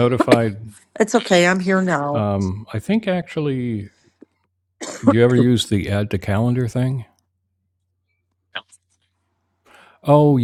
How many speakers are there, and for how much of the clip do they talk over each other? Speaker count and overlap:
2, about 1%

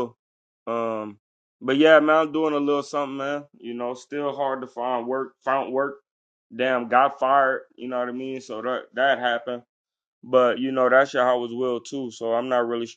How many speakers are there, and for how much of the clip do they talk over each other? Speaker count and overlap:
1, no overlap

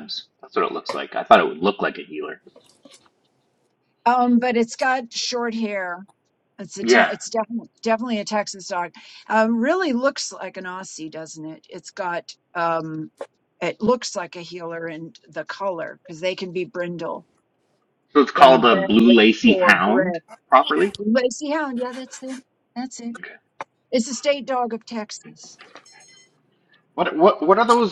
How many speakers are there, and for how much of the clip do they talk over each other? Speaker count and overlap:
2, about 6%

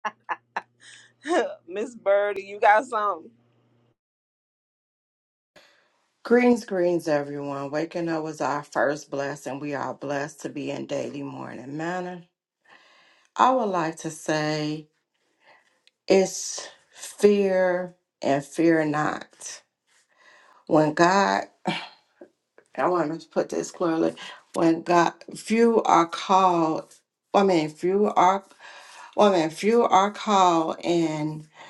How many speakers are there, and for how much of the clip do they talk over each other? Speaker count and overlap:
2, no overlap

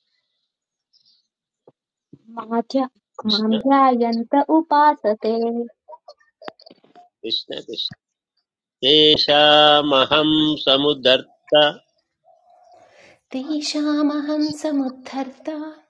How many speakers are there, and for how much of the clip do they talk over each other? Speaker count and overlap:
3, about 2%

